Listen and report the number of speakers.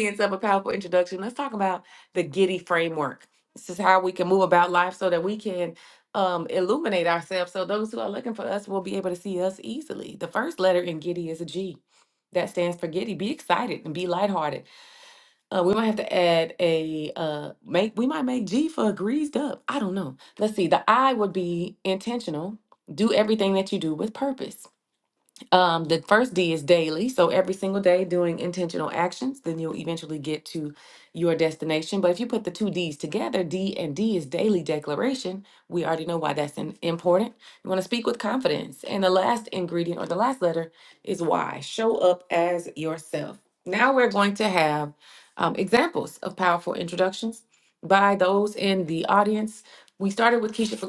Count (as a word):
one